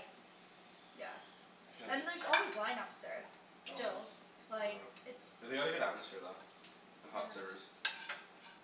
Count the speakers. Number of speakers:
2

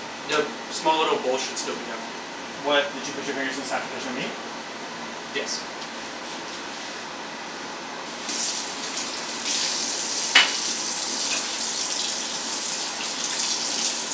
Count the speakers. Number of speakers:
2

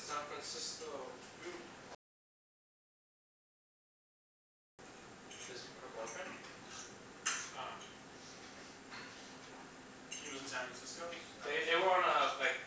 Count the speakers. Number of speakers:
2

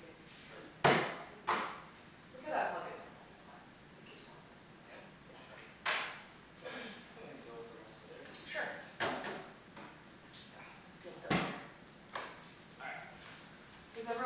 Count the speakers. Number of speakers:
2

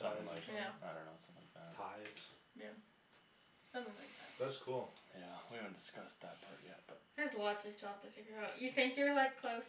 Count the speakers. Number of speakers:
3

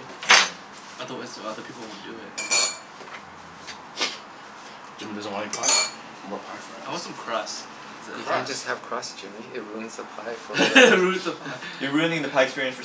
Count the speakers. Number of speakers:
4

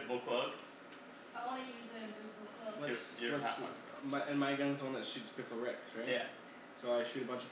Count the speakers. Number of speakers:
3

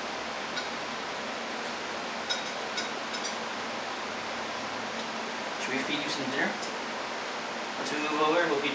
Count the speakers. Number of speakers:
1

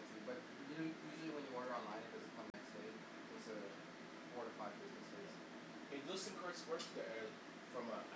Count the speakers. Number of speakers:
2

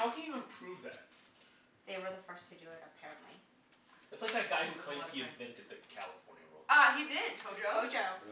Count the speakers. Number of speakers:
3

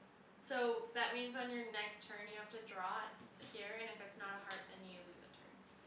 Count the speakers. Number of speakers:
1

